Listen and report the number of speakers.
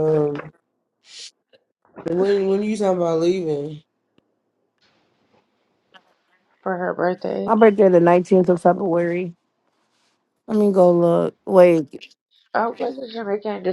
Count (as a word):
three